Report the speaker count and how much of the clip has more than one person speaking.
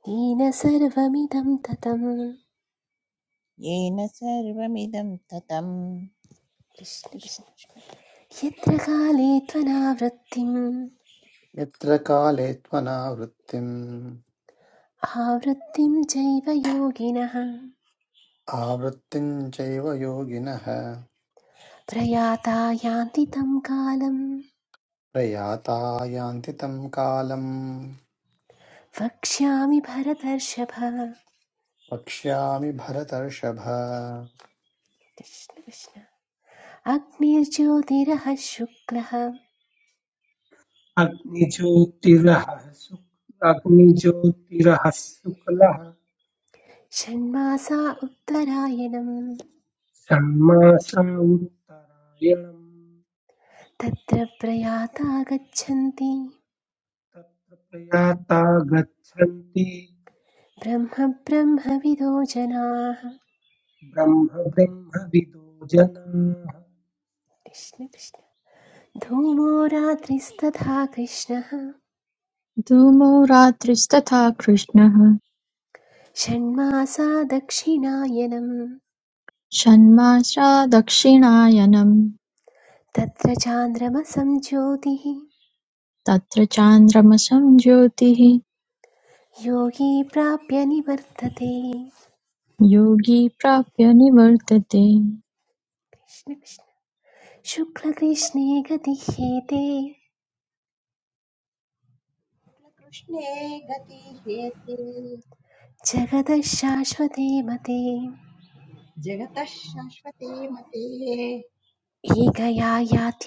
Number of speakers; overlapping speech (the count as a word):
six, under 1%